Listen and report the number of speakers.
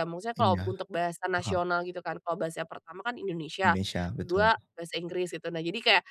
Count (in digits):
2